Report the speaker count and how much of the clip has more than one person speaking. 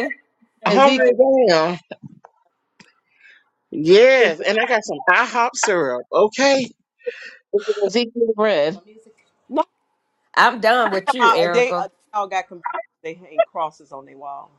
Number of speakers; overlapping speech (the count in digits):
4, about 9%